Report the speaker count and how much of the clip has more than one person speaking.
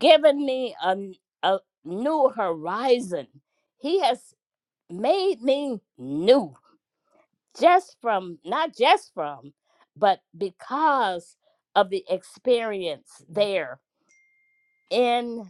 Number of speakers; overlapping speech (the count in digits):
1, no overlap